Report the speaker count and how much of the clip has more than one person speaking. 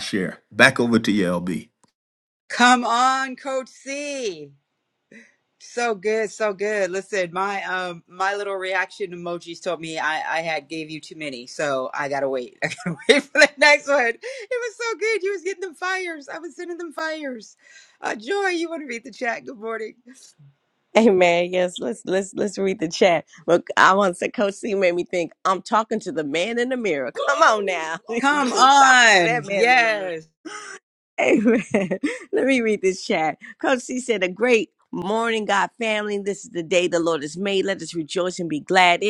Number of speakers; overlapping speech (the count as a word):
three, about 5%